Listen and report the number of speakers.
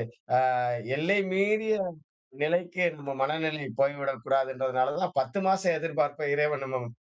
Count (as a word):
one